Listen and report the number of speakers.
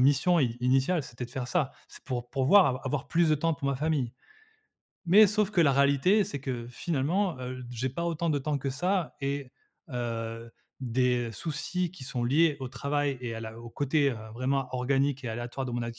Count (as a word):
one